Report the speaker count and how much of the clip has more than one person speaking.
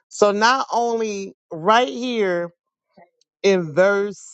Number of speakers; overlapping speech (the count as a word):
one, no overlap